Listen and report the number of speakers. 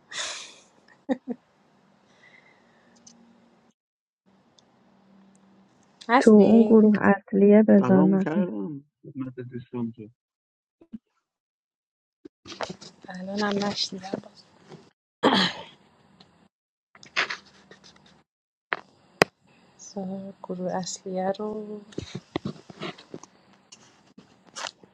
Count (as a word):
three